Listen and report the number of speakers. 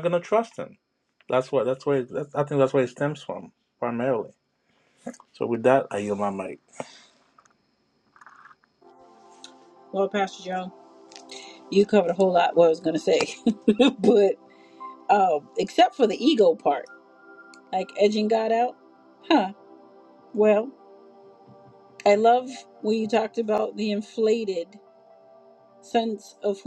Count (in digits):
2